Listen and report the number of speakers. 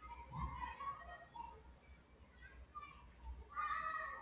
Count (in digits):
0